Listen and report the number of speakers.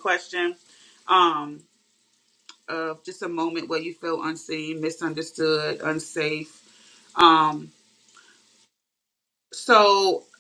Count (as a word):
one